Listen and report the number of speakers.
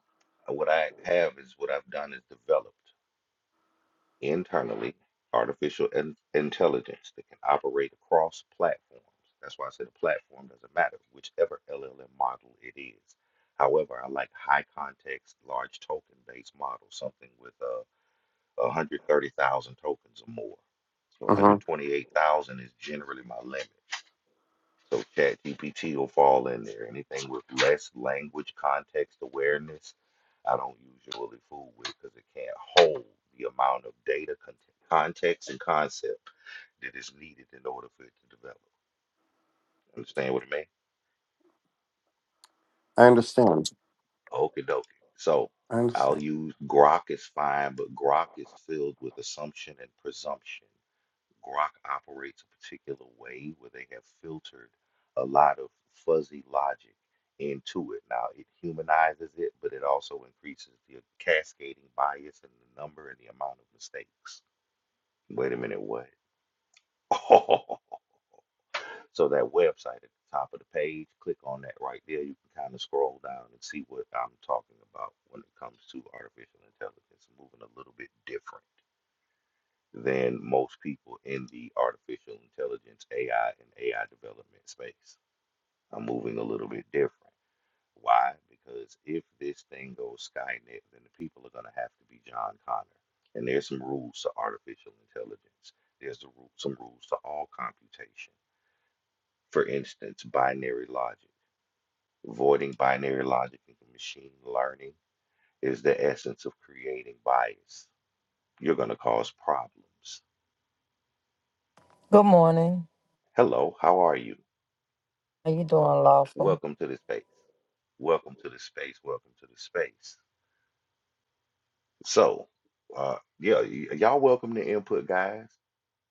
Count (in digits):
3